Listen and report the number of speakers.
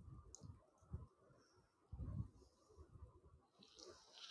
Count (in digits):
0